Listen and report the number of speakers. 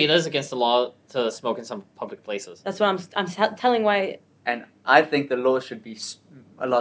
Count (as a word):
three